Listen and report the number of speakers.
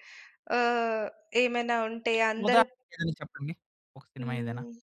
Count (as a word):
two